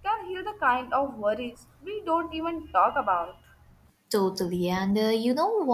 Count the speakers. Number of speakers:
2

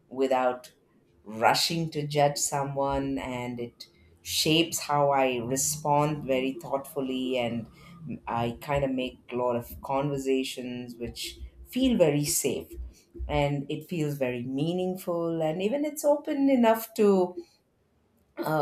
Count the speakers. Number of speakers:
1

